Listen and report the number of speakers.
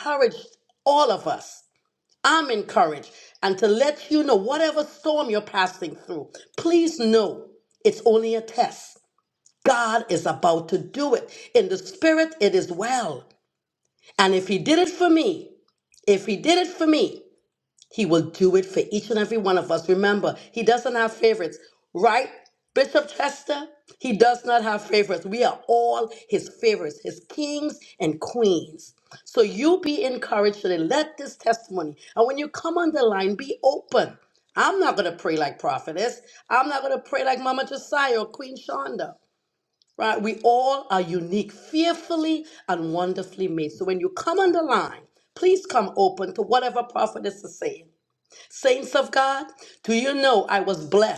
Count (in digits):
1